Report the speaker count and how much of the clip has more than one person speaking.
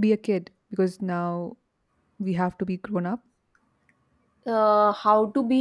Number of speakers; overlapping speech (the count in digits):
2, no overlap